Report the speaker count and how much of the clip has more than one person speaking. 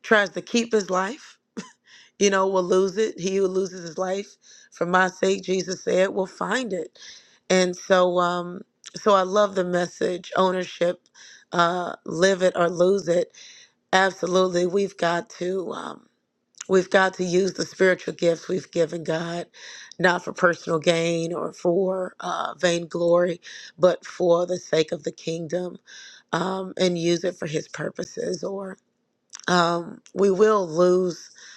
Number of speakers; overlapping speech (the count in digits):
1, no overlap